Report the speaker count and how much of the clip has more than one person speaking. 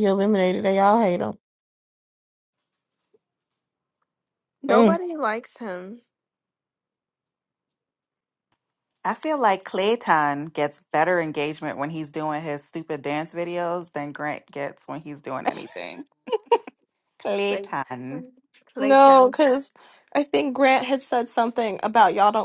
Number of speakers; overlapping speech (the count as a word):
four, about 7%